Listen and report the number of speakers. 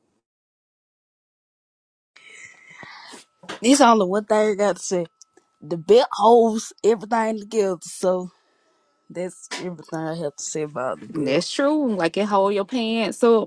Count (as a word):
two